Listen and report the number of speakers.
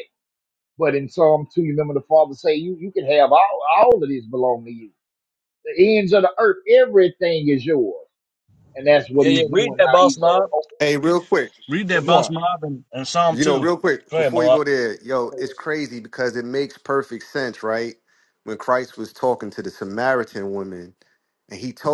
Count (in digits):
3